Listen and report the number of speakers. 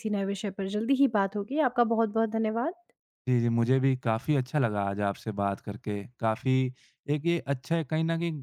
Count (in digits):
2